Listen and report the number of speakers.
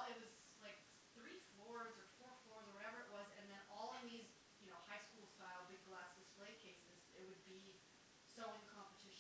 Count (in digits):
1